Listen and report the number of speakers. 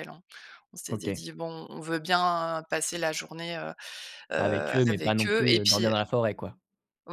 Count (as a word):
two